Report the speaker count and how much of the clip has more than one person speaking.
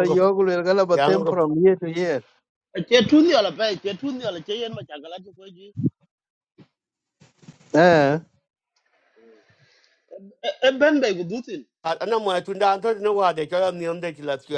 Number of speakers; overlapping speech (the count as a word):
three, about 4%